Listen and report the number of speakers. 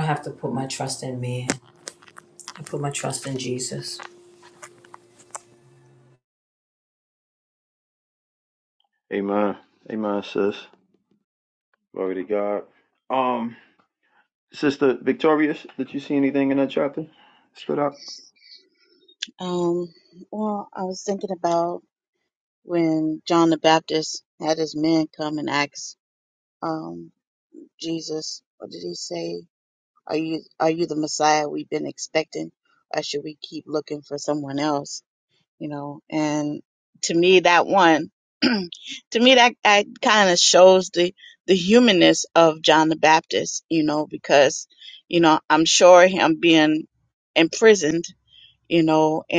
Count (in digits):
3